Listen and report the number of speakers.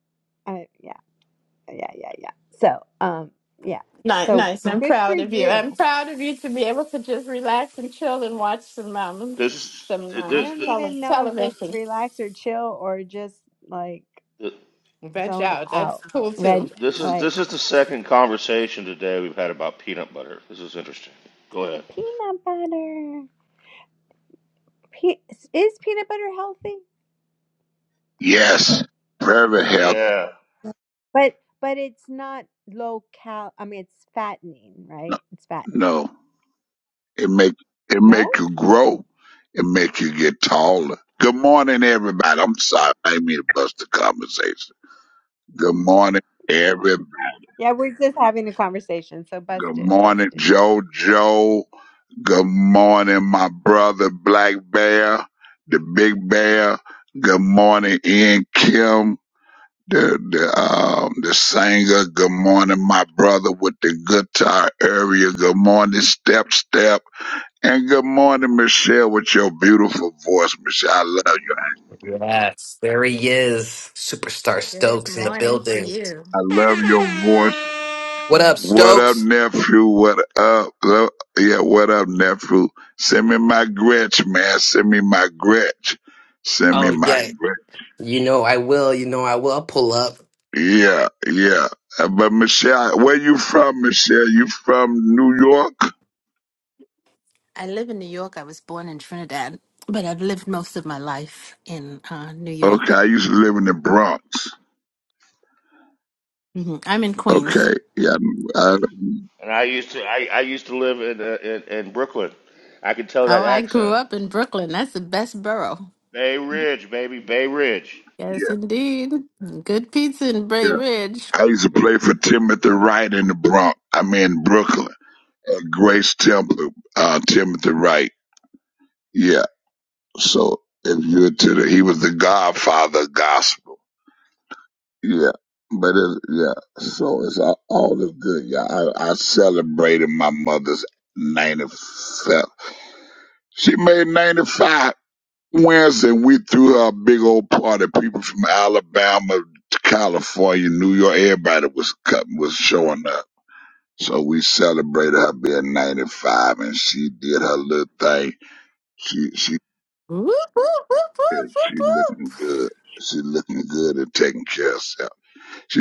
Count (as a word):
five